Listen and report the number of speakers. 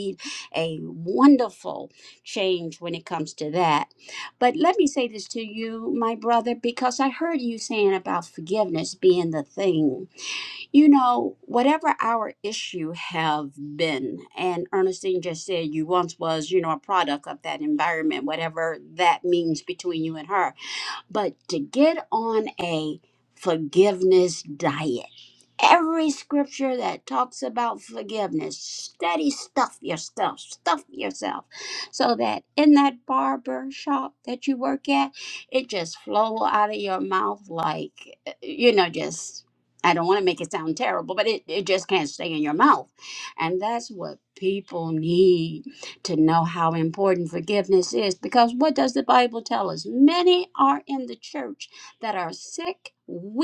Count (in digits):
1